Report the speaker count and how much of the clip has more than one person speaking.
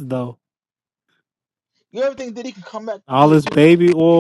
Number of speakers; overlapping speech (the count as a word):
two, about 13%